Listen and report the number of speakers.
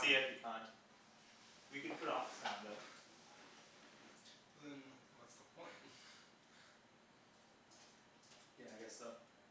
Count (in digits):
2